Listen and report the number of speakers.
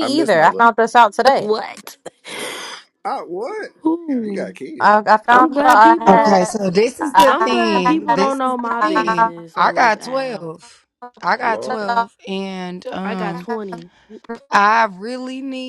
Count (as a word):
four